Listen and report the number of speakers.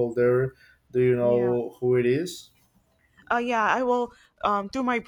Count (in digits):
2